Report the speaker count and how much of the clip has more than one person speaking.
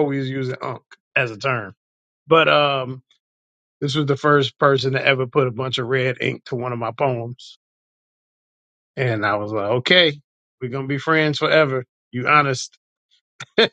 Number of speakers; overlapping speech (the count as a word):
one, no overlap